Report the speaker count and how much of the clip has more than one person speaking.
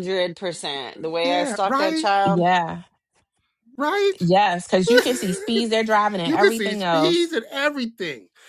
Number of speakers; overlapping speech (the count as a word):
three, about 22%